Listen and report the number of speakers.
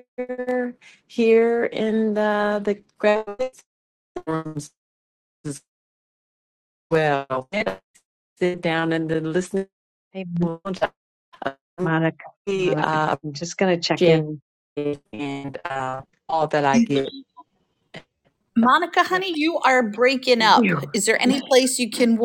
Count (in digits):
3